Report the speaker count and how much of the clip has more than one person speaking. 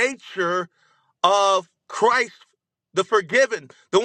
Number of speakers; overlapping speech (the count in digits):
1, no overlap